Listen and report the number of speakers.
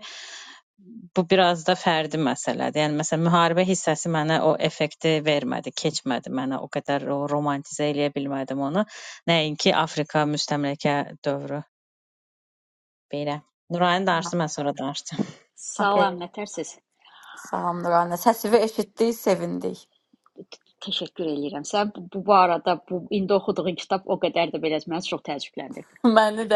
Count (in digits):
3